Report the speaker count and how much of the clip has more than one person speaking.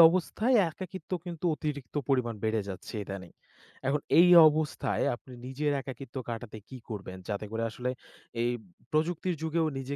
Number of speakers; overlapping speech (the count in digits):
1, no overlap